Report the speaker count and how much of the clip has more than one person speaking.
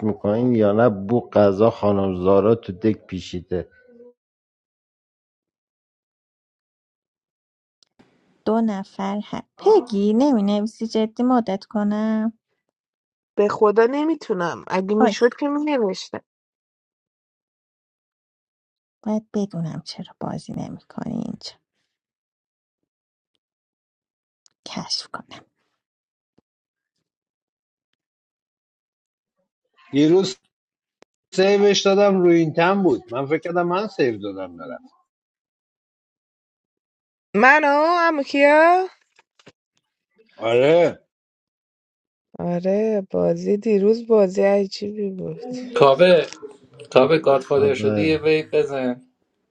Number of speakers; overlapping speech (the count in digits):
5, about 2%